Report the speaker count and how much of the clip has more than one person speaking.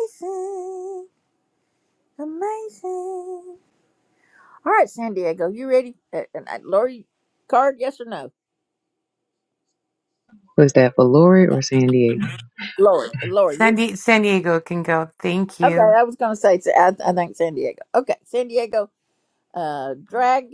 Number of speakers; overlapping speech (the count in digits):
3, about 3%